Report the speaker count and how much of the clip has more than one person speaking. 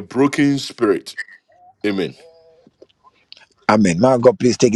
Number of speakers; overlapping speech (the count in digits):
2, no overlap